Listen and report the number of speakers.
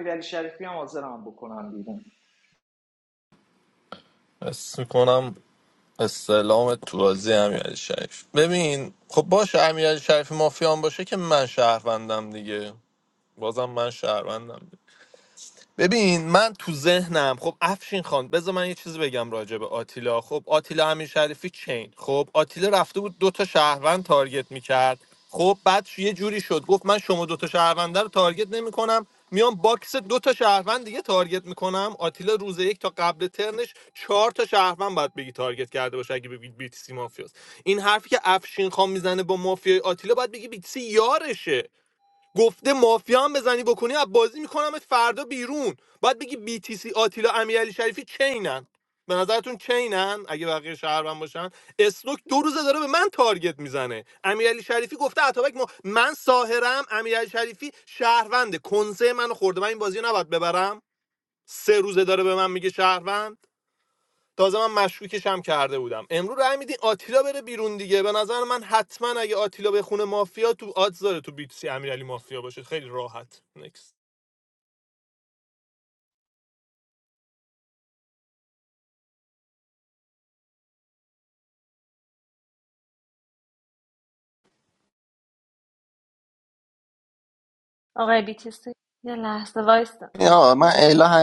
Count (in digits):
4